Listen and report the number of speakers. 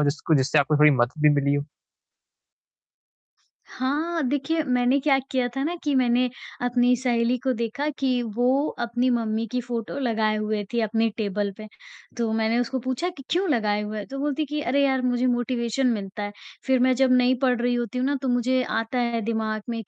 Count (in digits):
2